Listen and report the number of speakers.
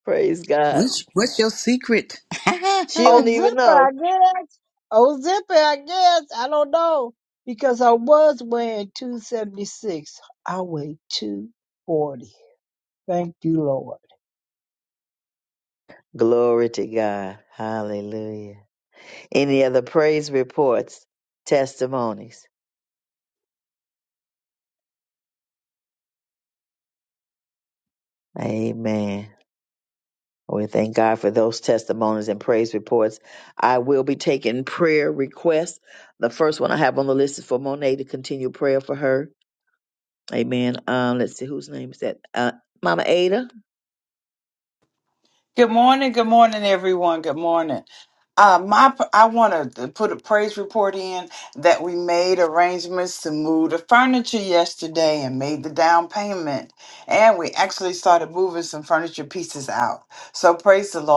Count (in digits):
4